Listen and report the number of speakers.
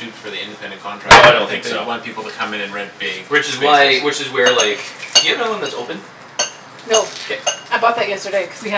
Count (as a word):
three